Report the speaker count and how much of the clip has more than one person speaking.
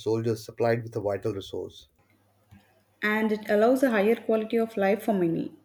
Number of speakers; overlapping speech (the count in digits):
2, no overlap